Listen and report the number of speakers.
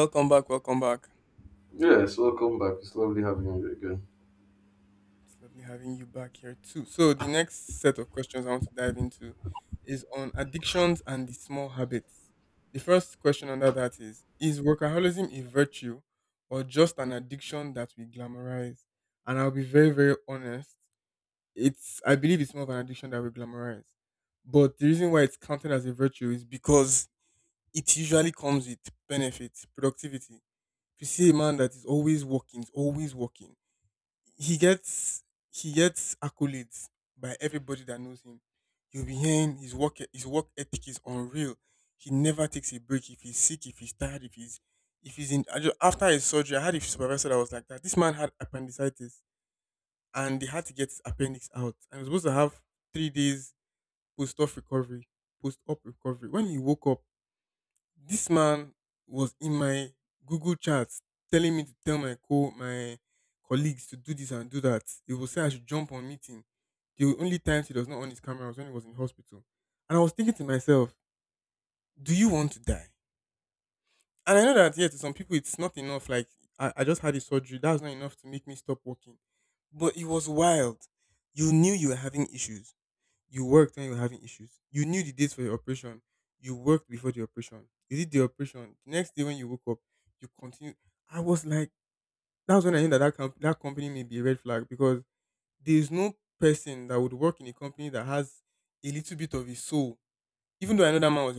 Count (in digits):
2